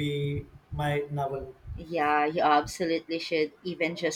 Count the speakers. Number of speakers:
two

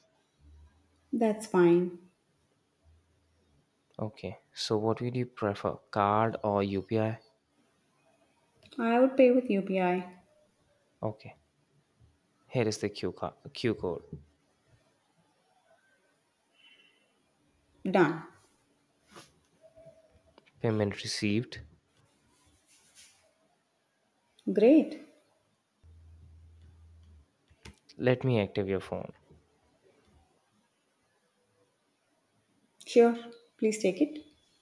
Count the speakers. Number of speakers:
two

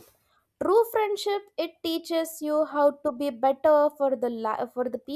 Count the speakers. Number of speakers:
one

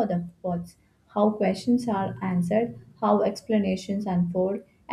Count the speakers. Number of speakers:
one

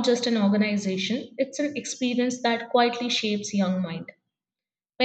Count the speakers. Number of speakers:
one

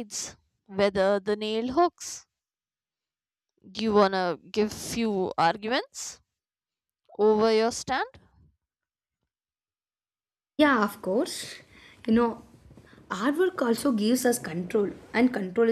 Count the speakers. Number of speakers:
two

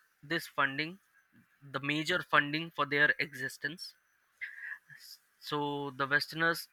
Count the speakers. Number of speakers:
one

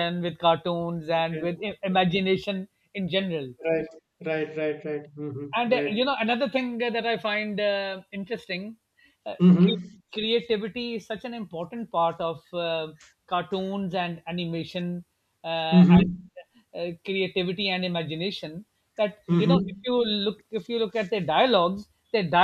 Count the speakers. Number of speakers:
two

